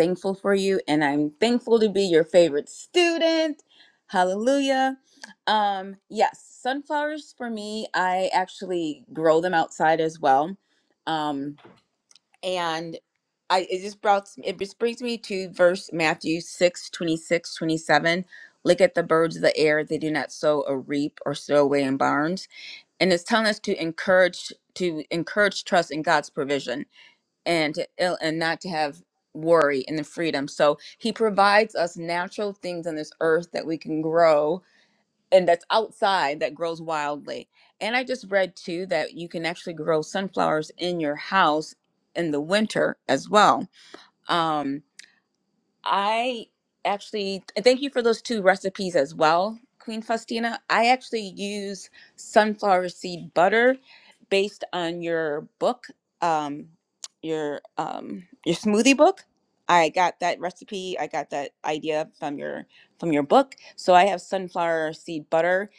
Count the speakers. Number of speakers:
1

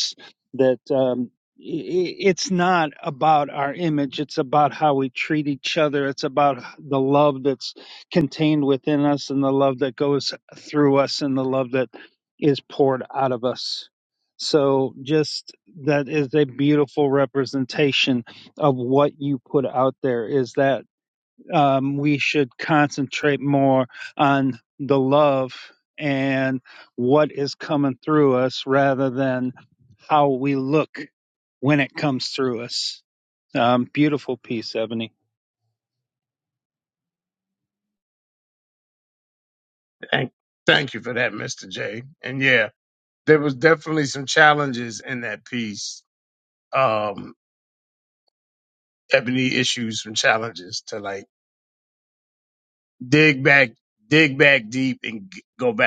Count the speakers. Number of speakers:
2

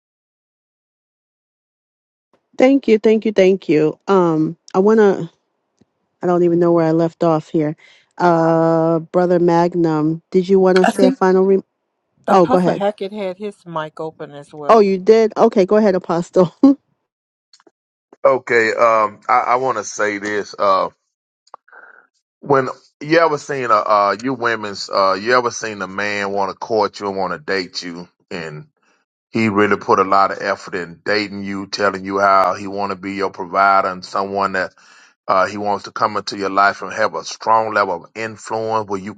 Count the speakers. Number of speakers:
3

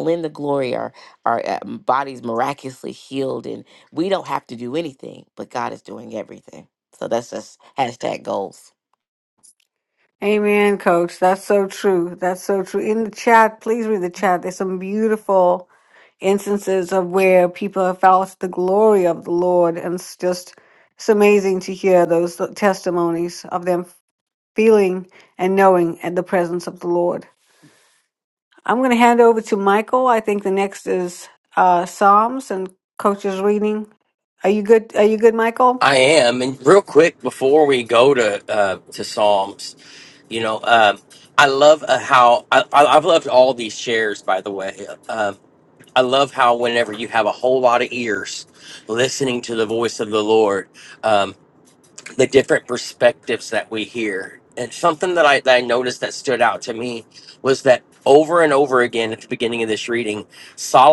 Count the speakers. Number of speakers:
3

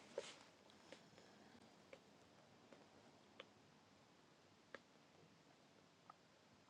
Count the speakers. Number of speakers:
0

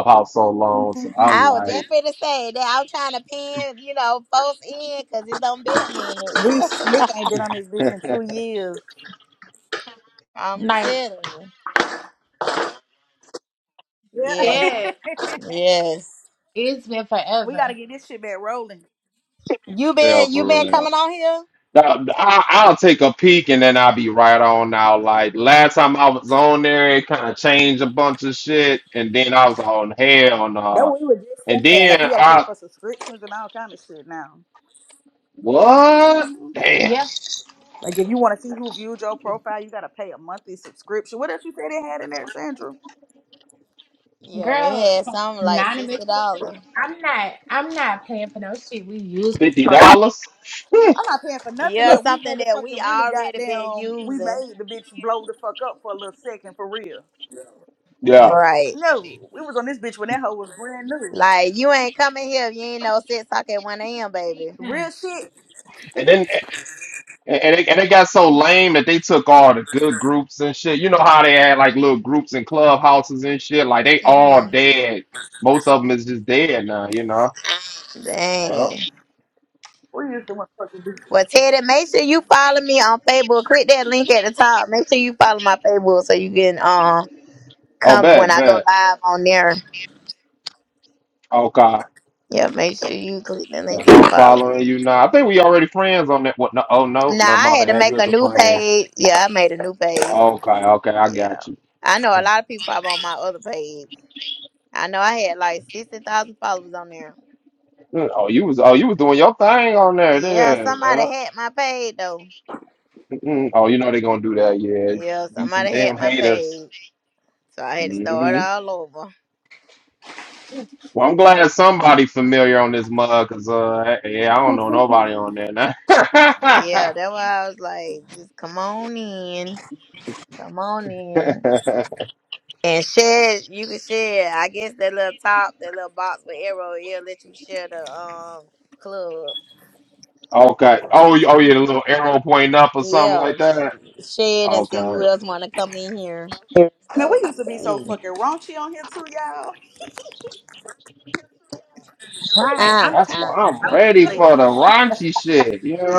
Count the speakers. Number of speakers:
4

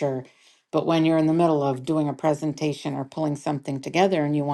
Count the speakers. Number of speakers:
1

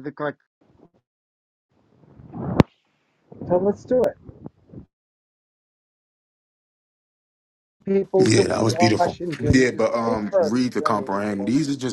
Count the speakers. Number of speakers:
2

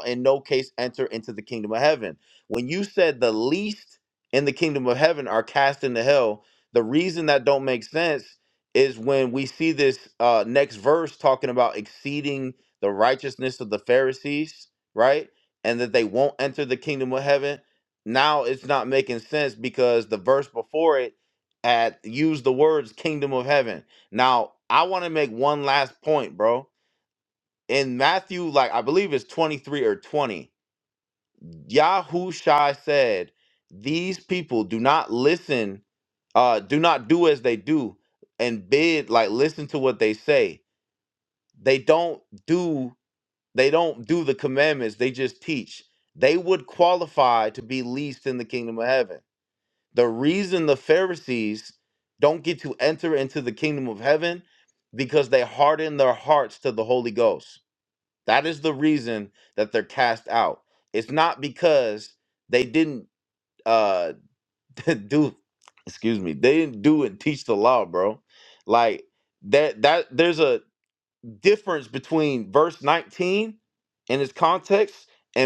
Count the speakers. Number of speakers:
1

